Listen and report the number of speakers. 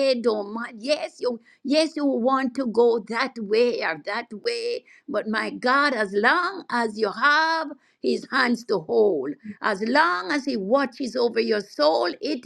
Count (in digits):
1